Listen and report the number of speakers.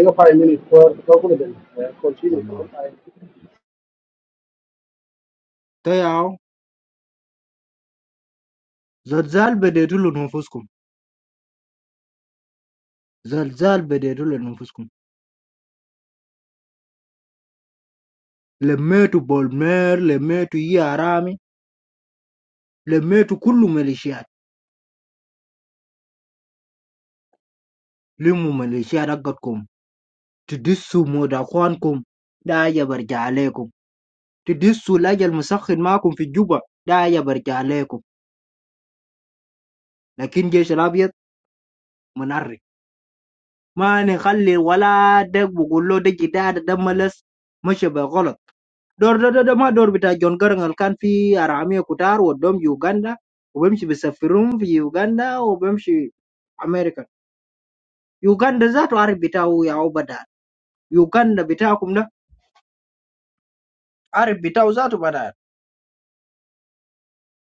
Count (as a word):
two